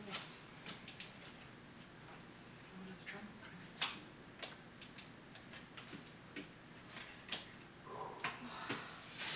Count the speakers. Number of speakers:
0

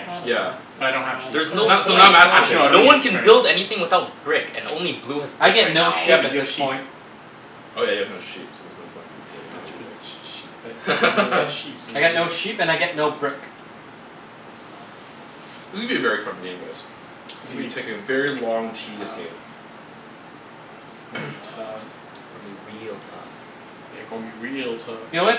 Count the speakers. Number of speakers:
4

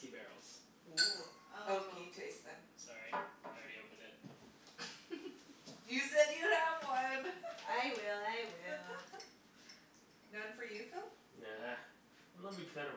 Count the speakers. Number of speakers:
4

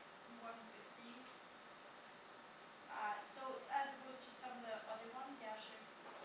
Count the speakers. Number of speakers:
1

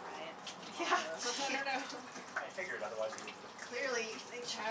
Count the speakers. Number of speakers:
3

